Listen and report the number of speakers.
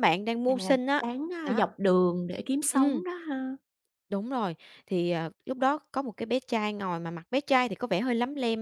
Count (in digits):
2